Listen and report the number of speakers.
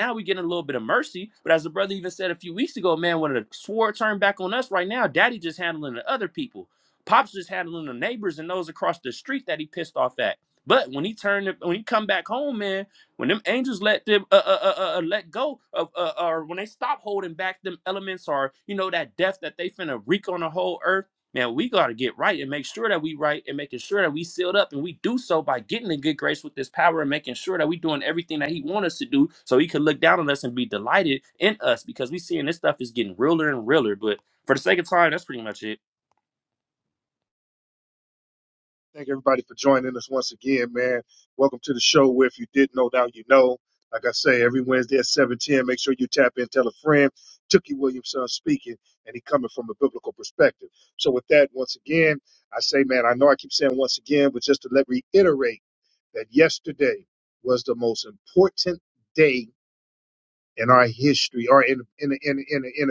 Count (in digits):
2